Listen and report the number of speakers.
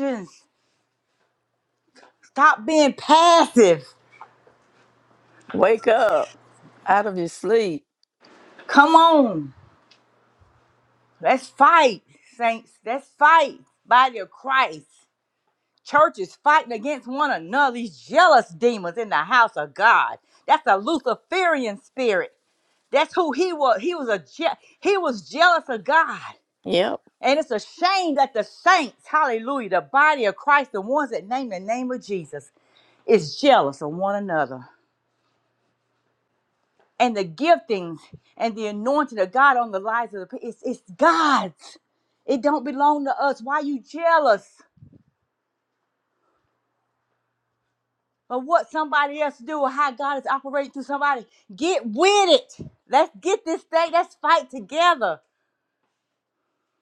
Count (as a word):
two